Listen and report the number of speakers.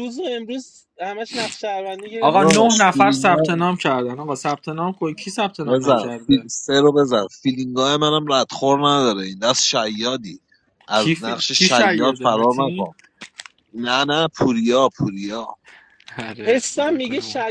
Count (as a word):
three